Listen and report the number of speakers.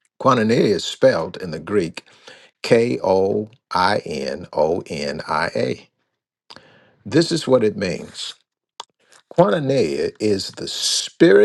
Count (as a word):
one